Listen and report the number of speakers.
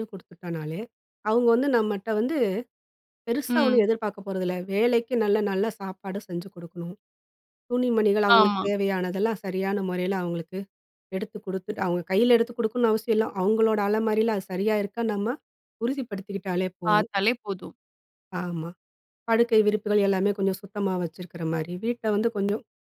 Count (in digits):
2